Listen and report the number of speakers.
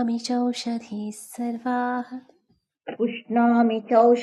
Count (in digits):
2